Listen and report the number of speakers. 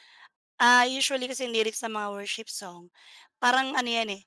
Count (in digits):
1